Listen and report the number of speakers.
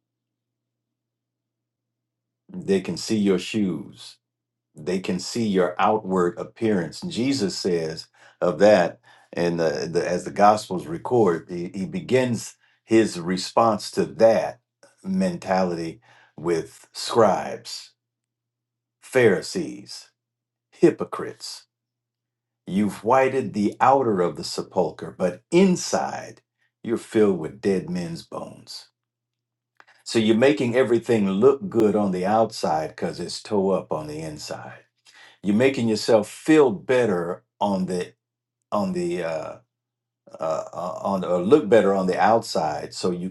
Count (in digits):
1